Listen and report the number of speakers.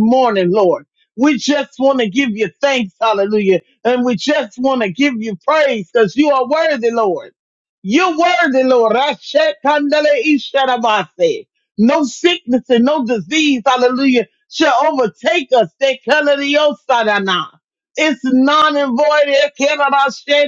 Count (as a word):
one